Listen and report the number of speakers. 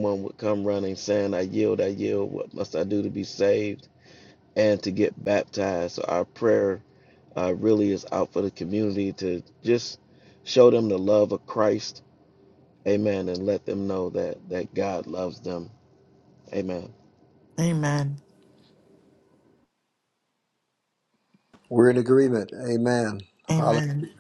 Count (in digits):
3